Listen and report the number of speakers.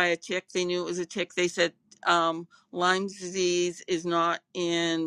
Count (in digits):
1